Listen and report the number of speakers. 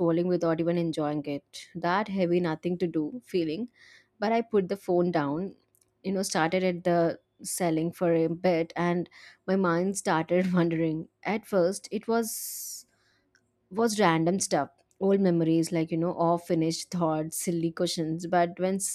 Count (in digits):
1